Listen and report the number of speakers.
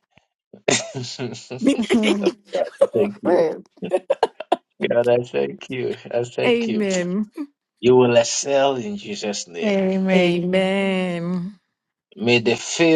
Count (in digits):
3